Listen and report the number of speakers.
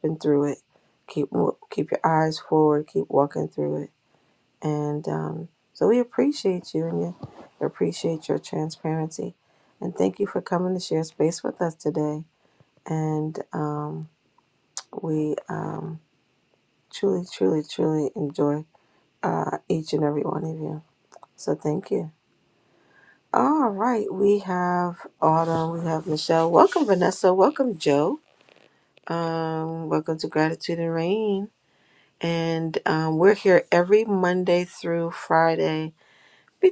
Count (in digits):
1